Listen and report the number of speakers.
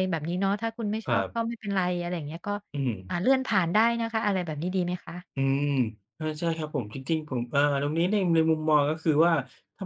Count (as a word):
two